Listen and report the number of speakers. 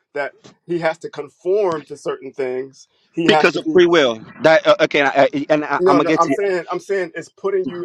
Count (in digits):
2